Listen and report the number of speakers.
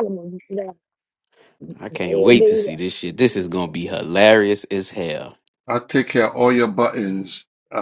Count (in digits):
3